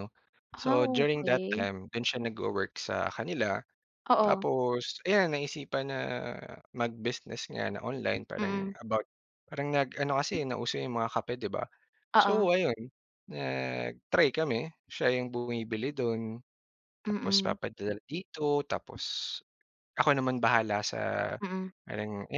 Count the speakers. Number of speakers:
two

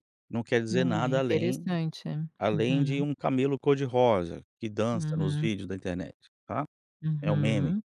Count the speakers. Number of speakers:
two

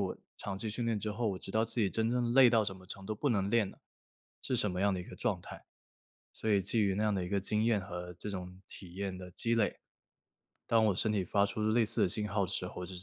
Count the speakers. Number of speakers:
one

